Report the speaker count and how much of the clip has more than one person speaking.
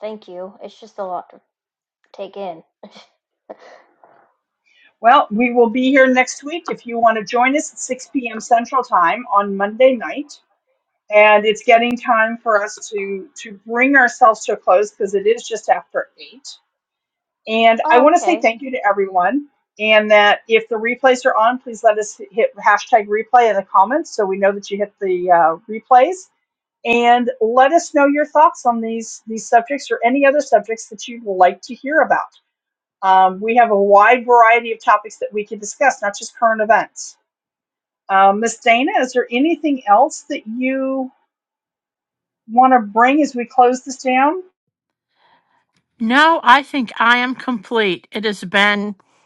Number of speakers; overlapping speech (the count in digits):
3, about 1%